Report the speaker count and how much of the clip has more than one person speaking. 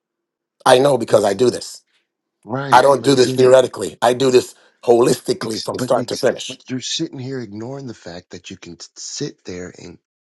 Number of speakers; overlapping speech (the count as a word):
two, about 20%